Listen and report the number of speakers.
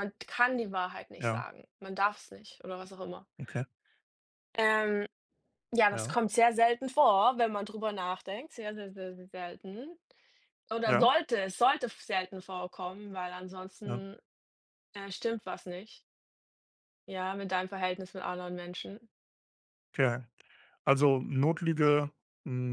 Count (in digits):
2